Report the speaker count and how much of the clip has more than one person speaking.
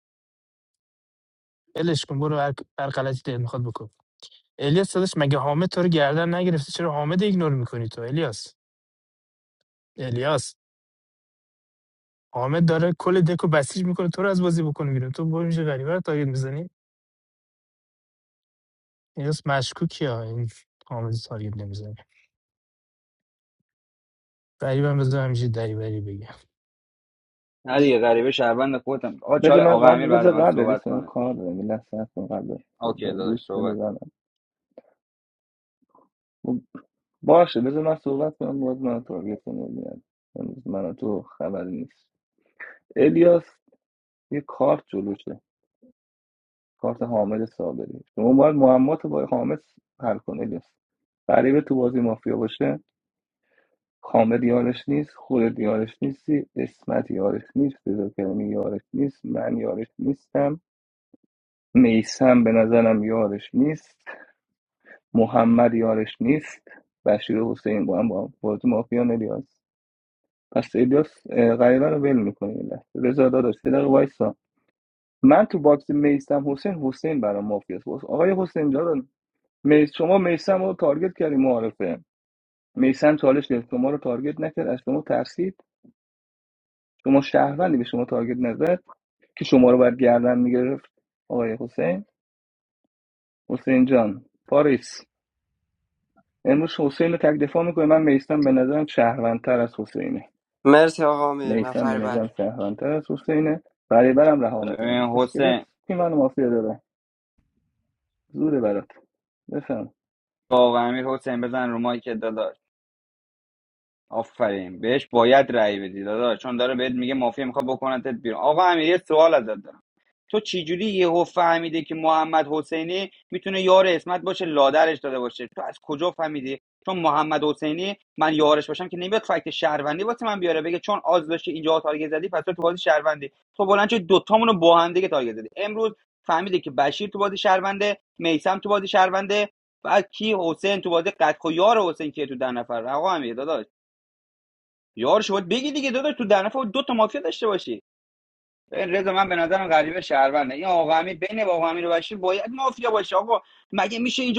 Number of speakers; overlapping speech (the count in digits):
4, about 3%